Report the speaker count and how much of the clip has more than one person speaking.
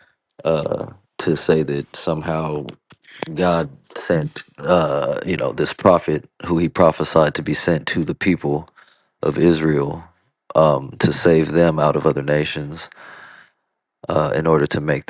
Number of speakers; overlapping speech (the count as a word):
one, no overlap